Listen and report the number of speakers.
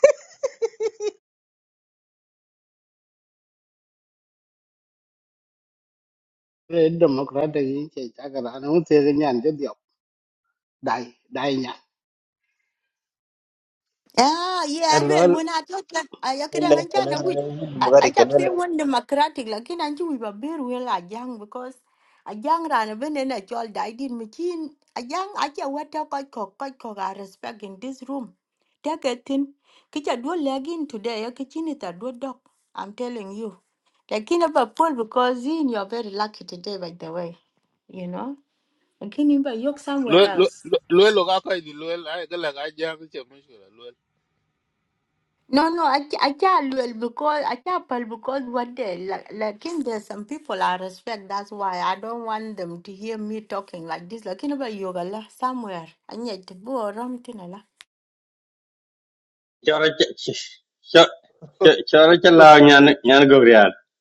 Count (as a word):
five